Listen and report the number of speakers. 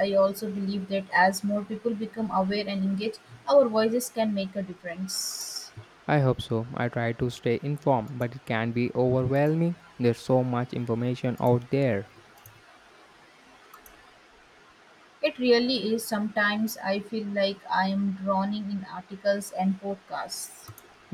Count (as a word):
two